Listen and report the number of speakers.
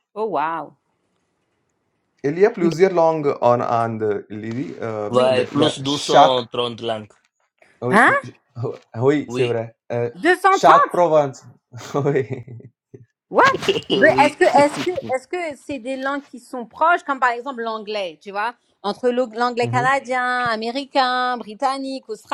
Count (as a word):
three